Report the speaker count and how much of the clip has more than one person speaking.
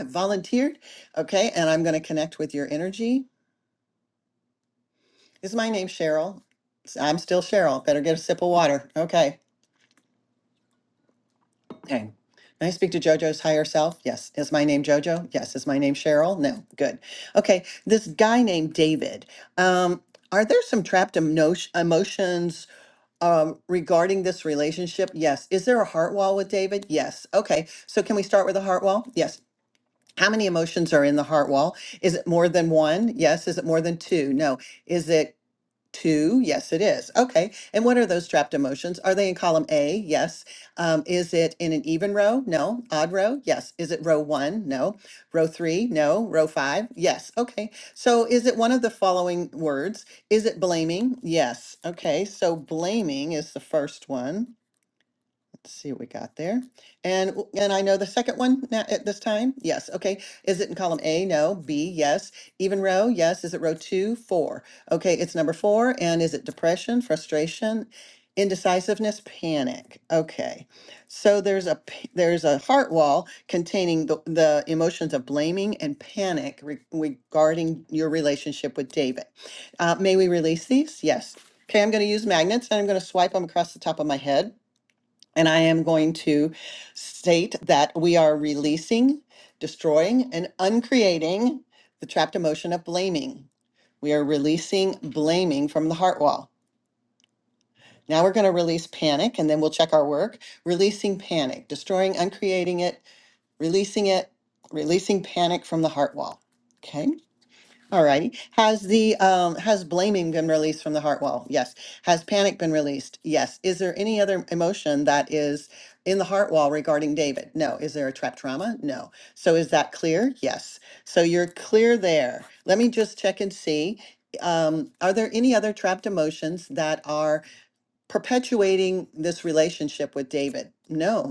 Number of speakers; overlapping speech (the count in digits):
1, no overlap